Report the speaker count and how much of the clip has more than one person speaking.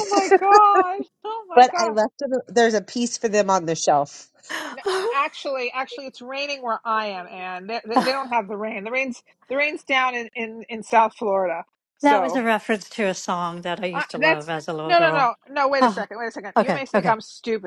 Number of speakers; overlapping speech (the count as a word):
three, about 15%